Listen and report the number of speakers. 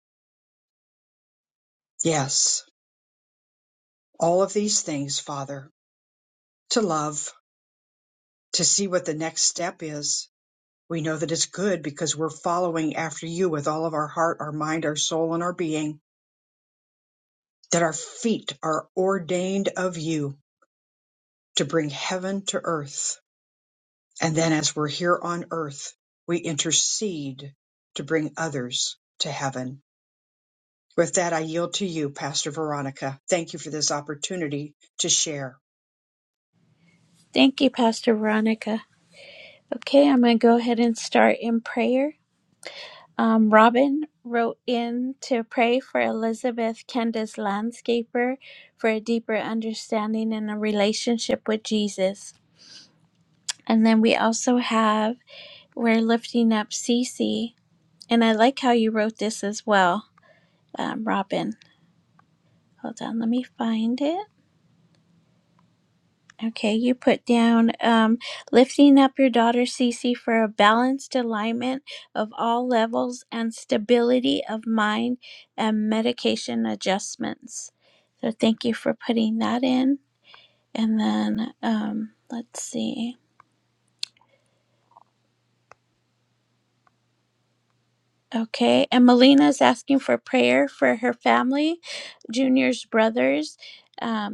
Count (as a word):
two